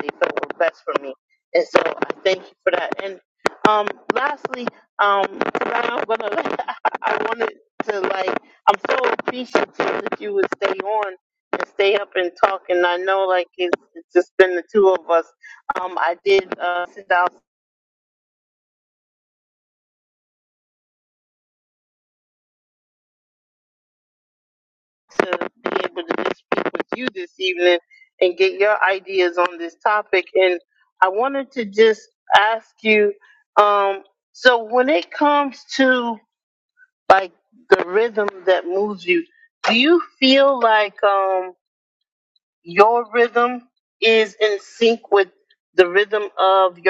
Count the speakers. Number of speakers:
1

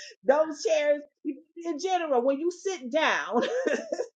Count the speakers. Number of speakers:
1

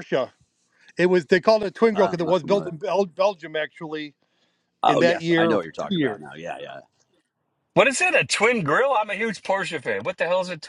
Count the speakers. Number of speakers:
3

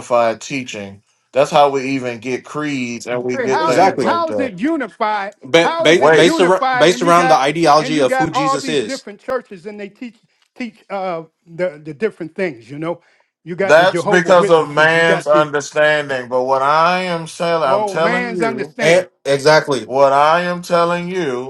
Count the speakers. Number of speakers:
3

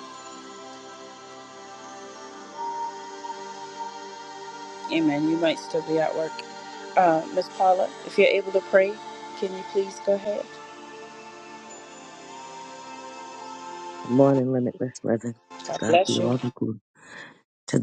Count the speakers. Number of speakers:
2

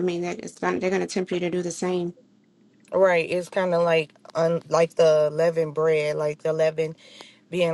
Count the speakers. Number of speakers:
2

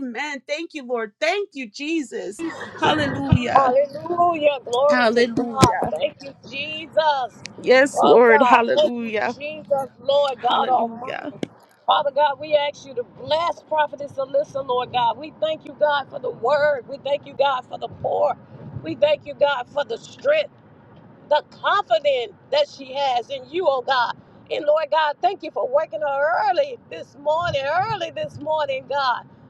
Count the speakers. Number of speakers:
2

